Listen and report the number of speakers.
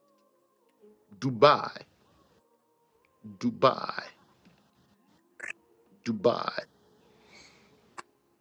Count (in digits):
1